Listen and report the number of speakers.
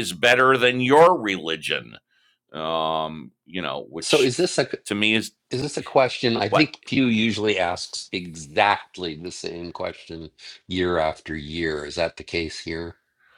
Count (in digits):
2